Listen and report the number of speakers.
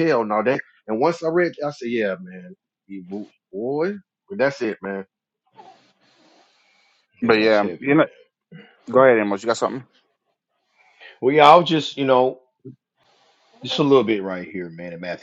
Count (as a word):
three